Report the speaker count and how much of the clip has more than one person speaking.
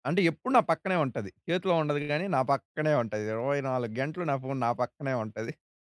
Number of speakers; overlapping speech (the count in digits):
1, no overlap